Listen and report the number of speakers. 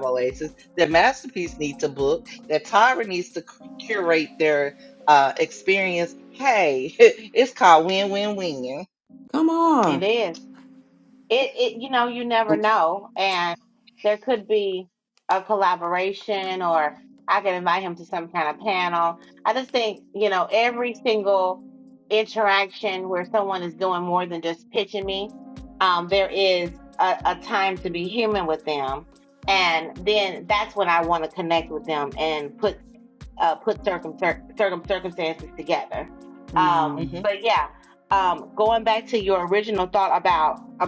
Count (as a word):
three